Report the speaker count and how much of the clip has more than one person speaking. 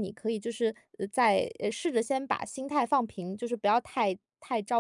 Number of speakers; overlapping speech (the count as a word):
one, no overlap